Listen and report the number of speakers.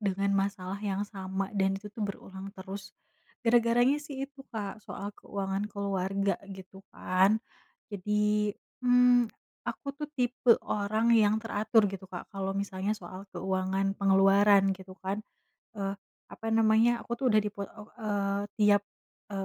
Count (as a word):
one